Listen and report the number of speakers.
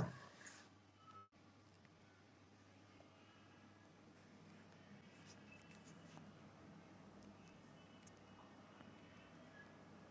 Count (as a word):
zero